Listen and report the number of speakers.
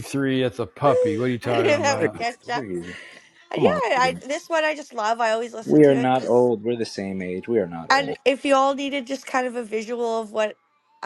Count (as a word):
three